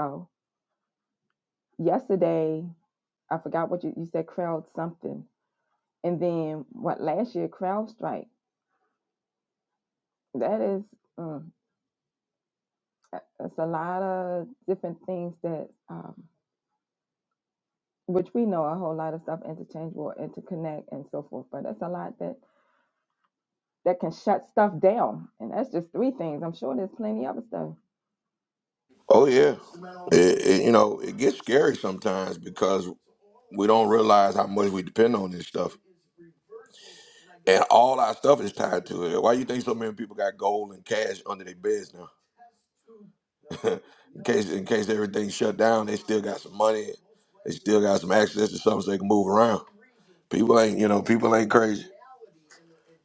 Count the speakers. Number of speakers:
two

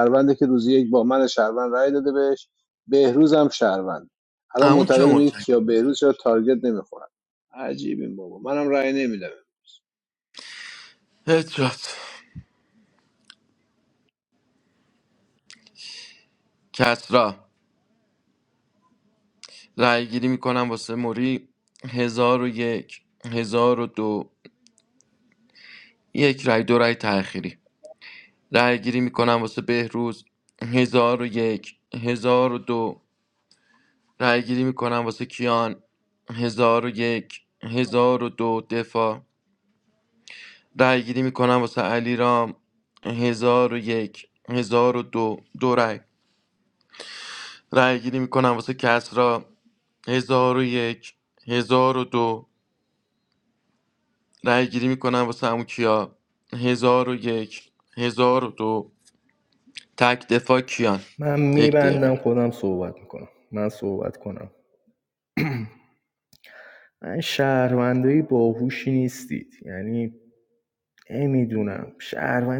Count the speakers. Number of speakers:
three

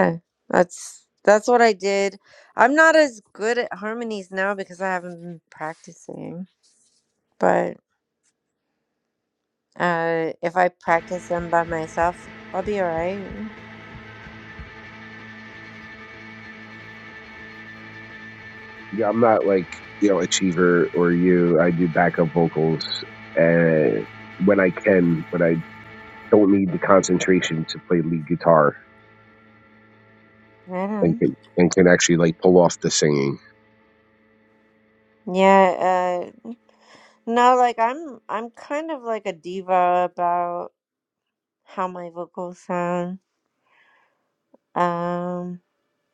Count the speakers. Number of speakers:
two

